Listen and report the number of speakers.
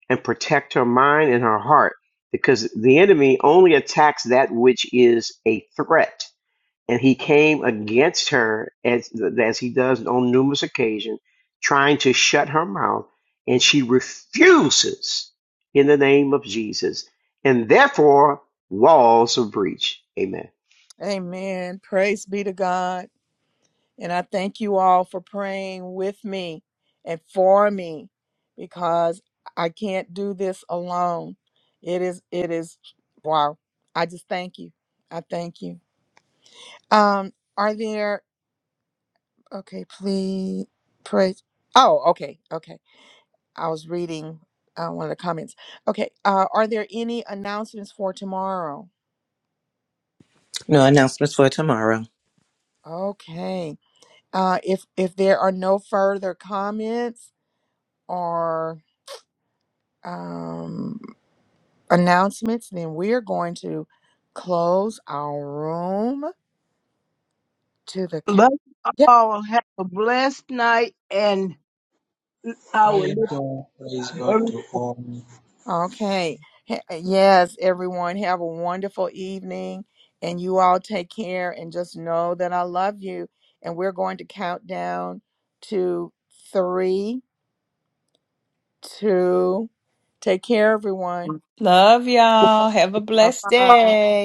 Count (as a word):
six